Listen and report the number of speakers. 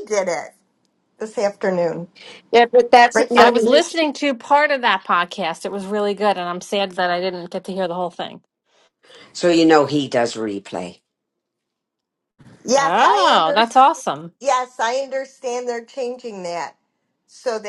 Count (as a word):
three